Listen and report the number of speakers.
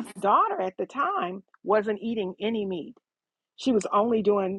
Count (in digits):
1